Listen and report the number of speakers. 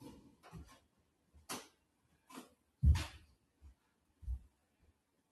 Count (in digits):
0